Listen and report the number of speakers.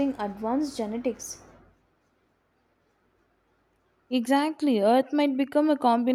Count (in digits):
2